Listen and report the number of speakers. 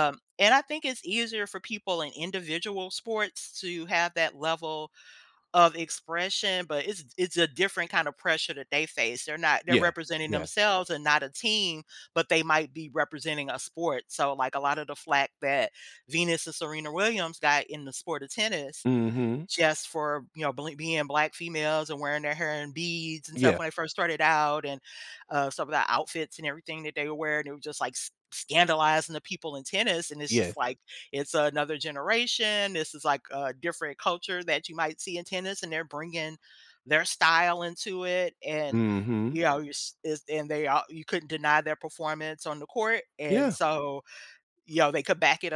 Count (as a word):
two